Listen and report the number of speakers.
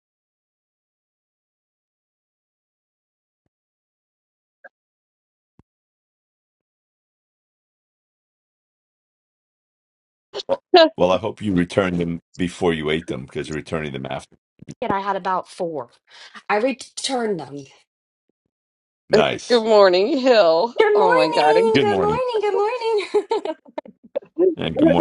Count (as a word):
three